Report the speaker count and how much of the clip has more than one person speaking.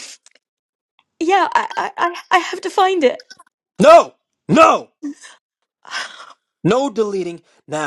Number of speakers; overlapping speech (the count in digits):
2, no overlap